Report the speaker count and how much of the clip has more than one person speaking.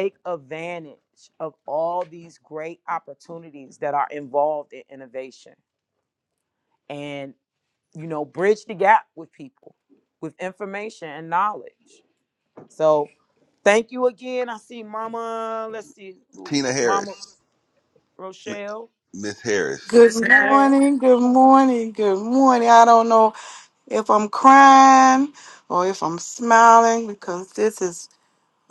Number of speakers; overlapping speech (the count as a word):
three, about 5%